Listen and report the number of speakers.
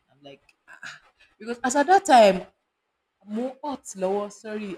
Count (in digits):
1